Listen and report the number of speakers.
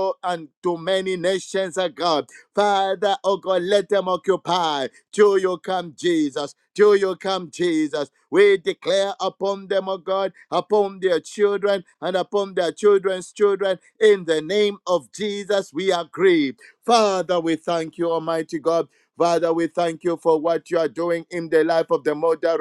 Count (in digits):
1